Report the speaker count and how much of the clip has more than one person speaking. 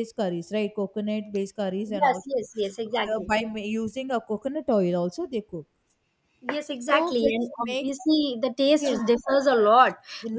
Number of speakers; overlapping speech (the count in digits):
2, about 20%